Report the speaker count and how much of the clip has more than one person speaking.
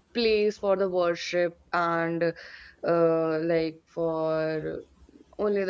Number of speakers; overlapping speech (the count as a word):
one, no overlap